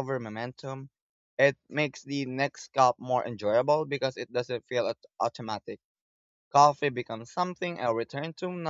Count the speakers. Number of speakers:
1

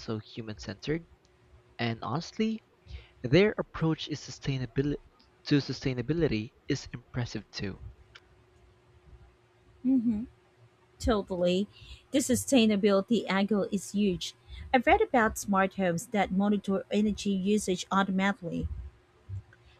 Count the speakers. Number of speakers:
2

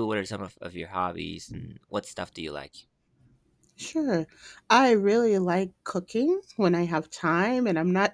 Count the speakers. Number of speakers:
2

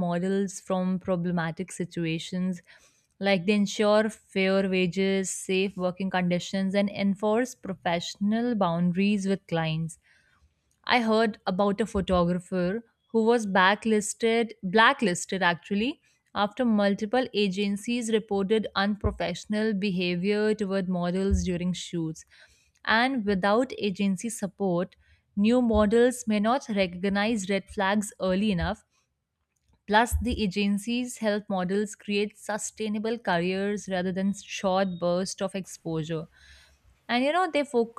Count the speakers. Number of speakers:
1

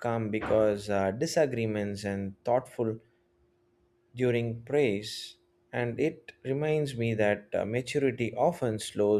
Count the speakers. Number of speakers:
1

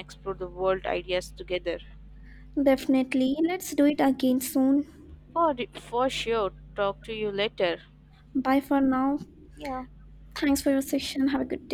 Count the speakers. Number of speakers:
2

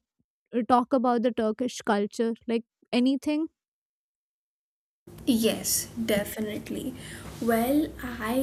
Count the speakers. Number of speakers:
2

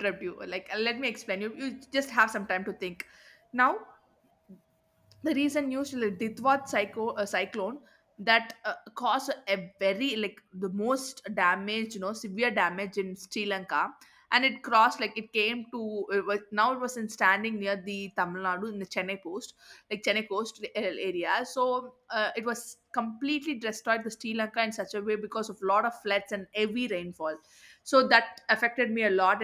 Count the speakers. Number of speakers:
1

